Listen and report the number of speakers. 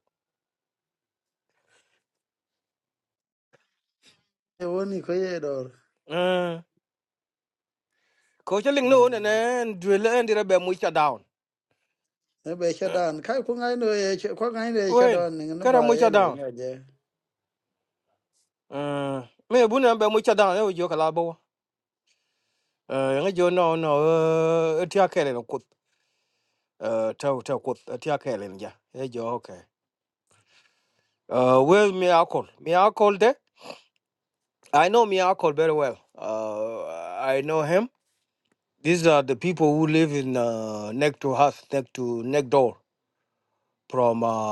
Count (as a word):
two